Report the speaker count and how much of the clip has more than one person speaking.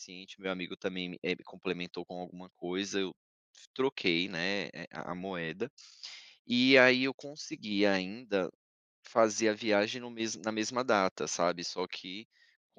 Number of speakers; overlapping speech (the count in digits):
1, no overlap